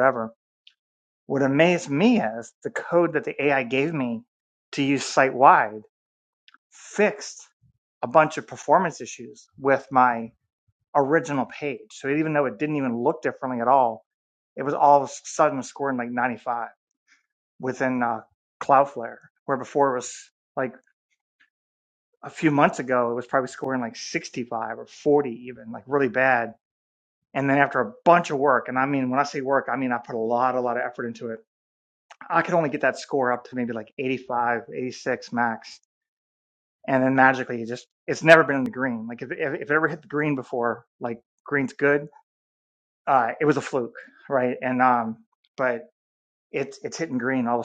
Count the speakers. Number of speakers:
1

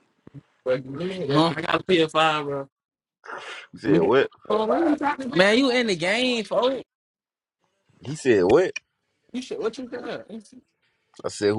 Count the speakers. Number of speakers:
2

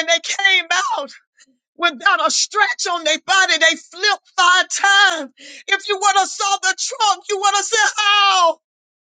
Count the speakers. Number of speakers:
1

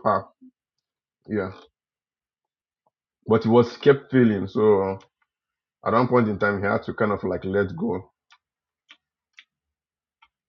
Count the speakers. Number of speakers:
1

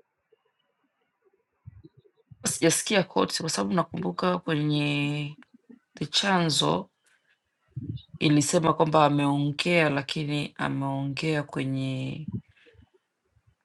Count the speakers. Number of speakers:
1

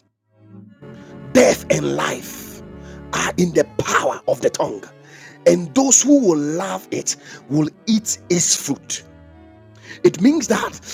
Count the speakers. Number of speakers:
1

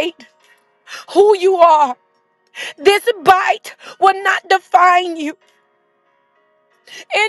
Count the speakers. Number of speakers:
1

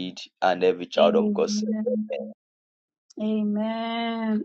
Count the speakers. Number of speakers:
2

